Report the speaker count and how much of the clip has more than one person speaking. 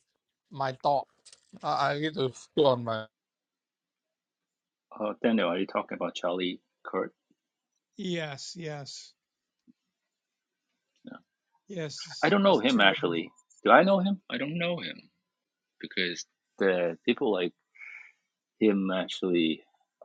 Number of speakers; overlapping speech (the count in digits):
3, about 5%